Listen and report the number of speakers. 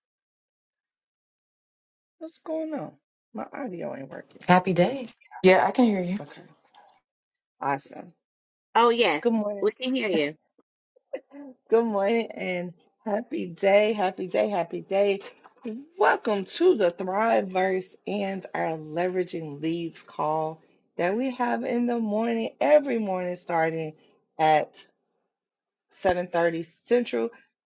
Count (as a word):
three